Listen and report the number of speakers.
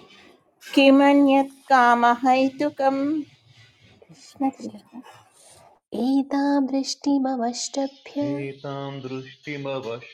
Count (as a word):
three